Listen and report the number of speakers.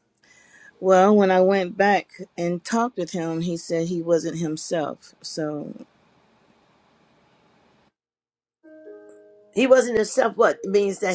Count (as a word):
two